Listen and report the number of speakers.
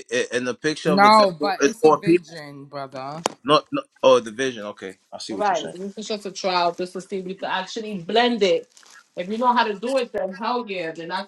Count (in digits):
3